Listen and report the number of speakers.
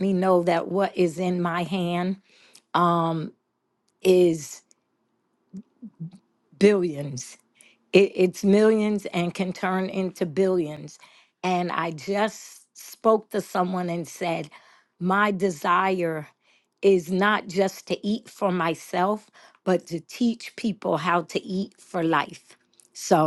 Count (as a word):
one